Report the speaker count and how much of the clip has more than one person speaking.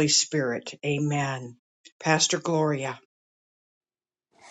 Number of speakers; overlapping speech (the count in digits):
1, no overlap